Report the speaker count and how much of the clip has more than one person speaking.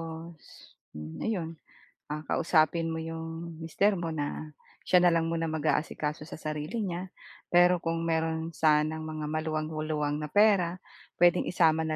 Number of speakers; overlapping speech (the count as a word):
one, no overlap